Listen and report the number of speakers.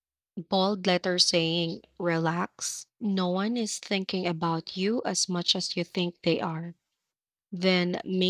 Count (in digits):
1